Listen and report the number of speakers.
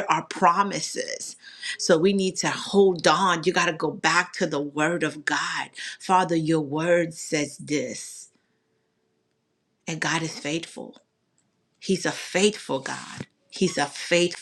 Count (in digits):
1